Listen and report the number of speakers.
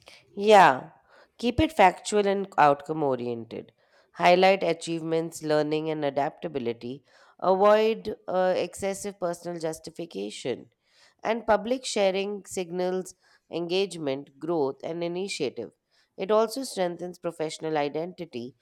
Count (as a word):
one